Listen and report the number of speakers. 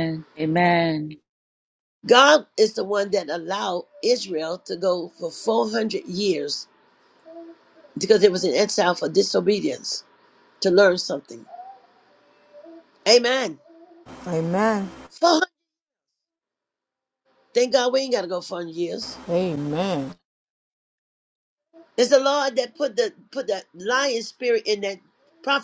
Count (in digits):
3